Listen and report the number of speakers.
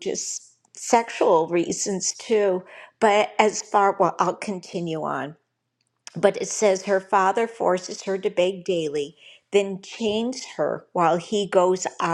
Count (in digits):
1